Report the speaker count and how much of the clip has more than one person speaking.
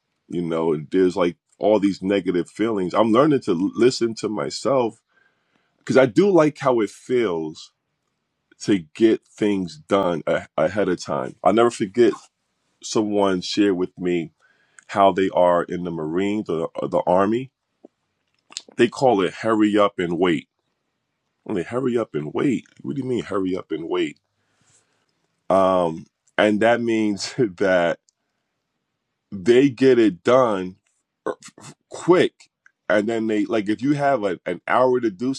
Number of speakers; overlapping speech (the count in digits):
1, no overlap